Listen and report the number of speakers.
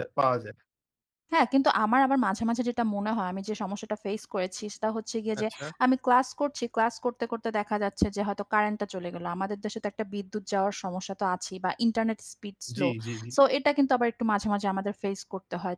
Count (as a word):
two